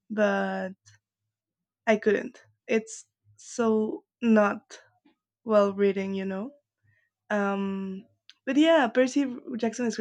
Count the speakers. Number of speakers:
1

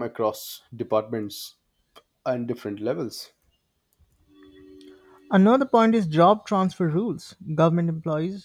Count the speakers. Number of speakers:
2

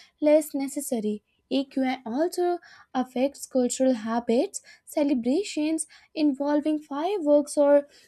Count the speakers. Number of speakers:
1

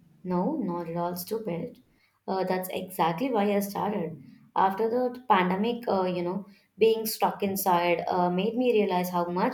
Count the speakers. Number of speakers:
1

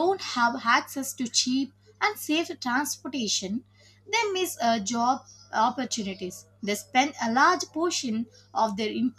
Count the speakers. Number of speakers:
1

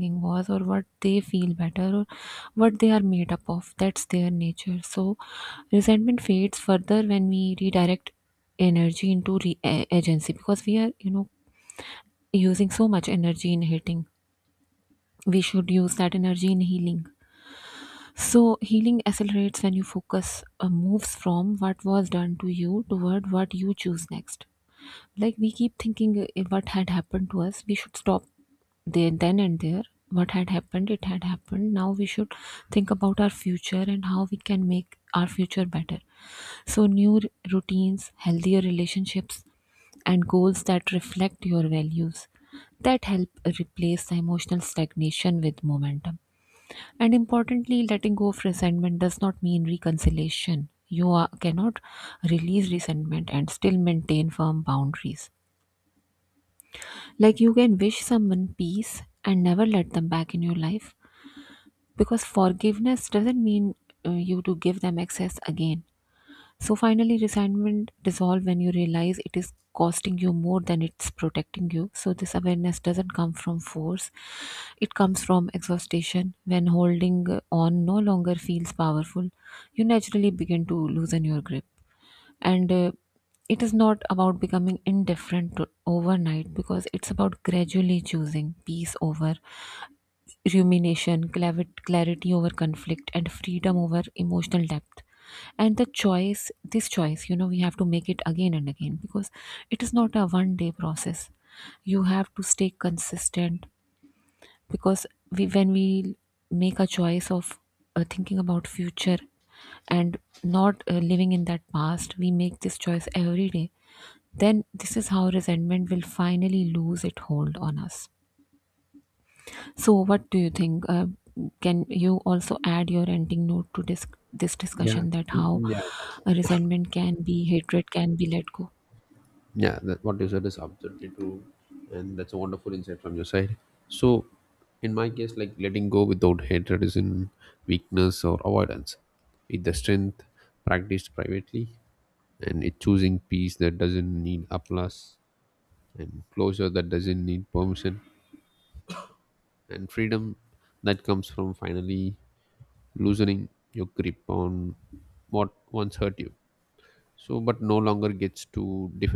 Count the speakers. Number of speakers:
2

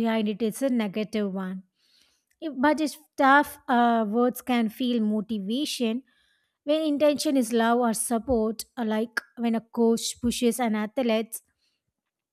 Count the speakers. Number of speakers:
1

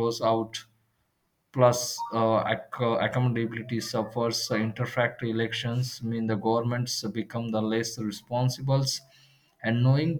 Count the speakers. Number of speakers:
1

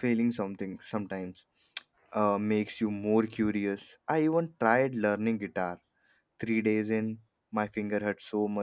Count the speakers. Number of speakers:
1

